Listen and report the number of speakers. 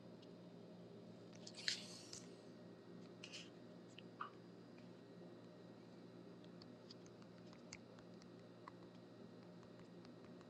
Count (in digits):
0